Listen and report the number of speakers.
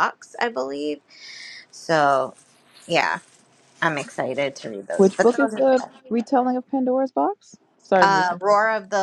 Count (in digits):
2